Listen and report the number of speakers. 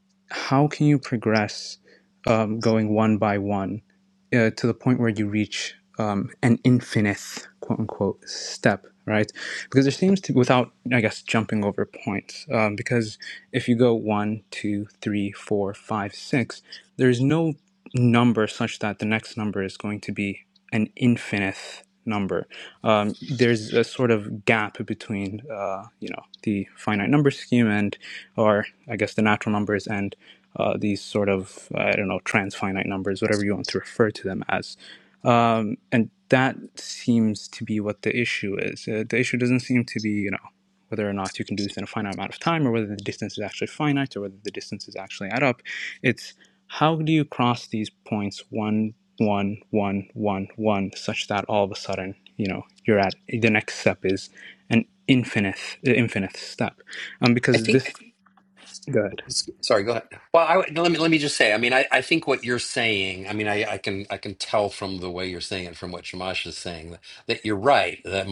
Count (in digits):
2